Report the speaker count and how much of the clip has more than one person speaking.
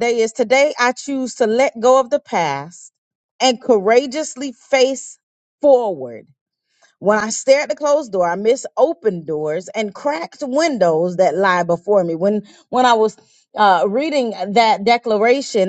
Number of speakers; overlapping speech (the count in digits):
1, no overlap